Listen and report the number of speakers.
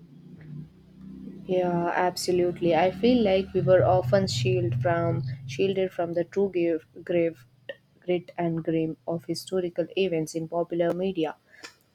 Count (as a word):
one